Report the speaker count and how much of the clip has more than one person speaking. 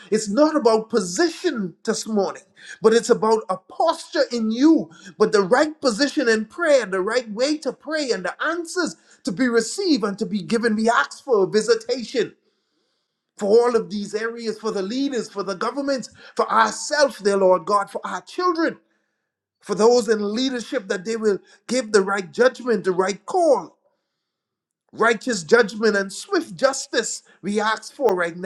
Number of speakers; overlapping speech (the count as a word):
one, no overlap